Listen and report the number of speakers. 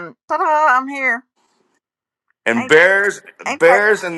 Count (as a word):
two